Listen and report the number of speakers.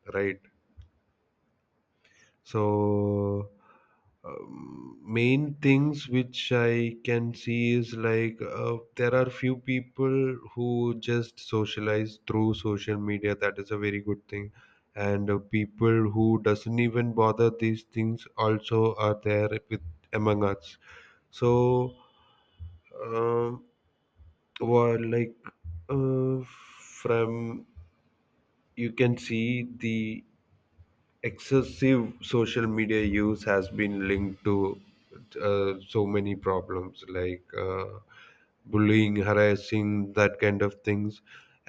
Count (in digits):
1